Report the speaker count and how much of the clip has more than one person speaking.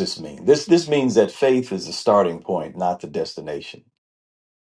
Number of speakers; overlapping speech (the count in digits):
1, no overlap